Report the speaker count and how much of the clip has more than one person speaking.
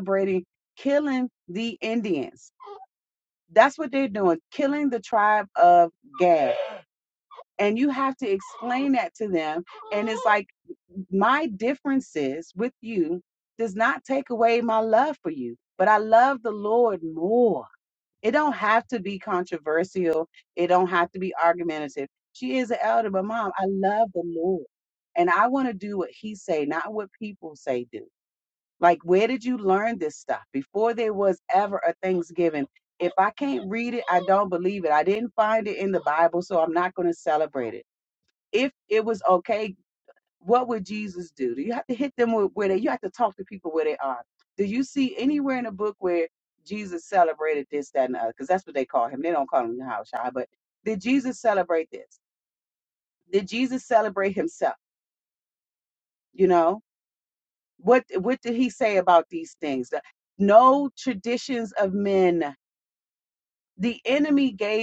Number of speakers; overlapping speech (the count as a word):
one, no overlap